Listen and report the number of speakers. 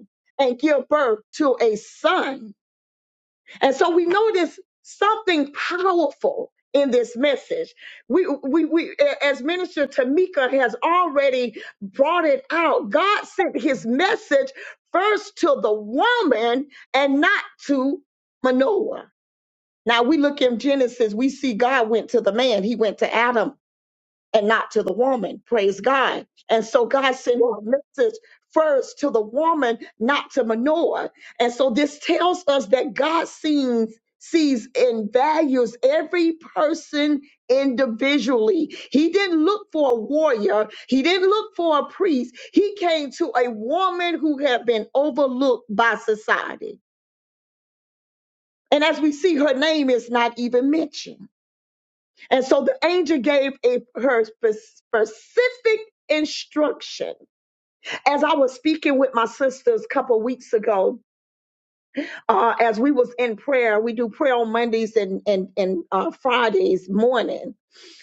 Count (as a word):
one